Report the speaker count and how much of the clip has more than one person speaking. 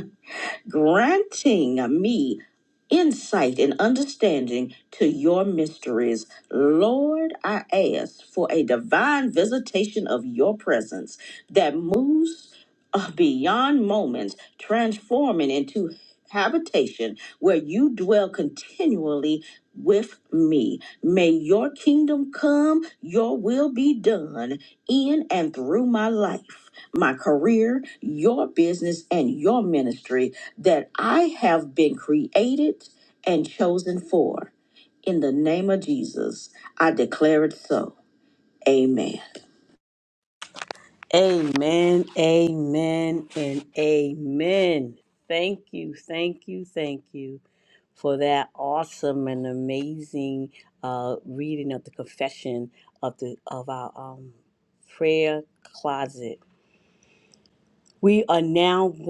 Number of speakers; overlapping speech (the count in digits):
2, no overlap